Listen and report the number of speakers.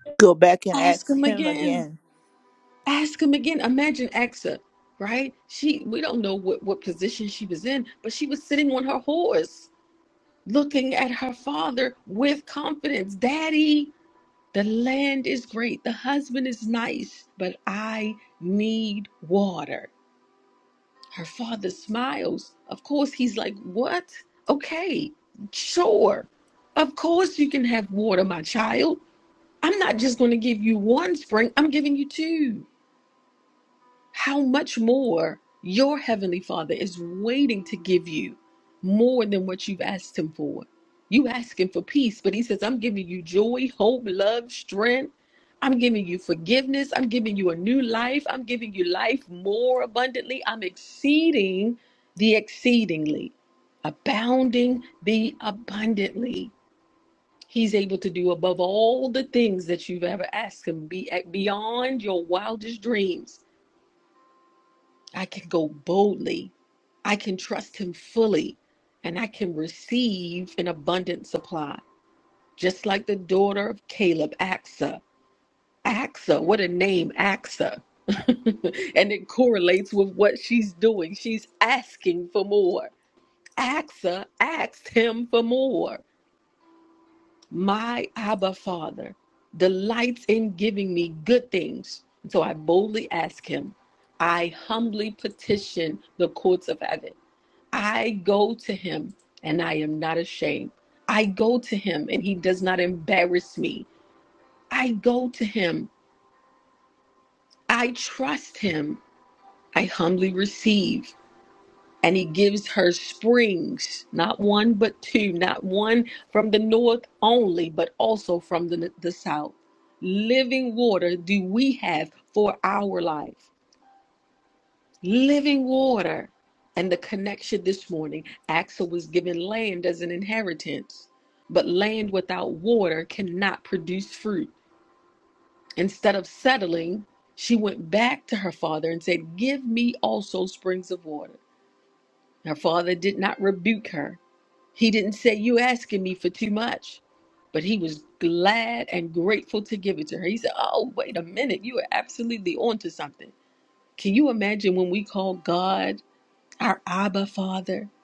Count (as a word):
two